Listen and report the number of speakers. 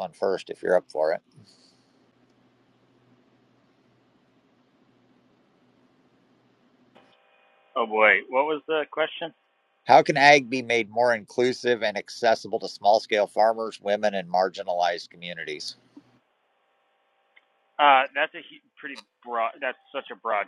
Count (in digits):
2